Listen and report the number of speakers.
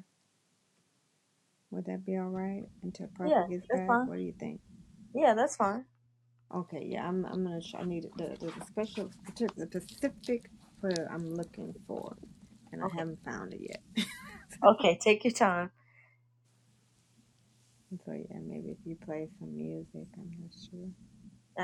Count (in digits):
2